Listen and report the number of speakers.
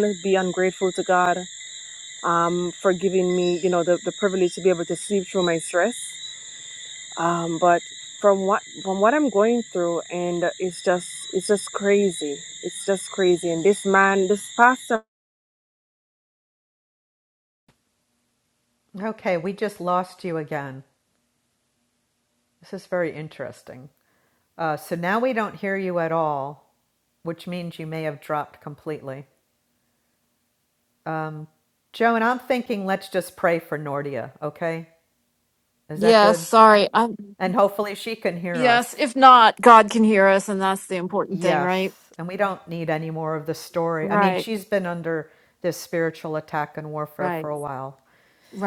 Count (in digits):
3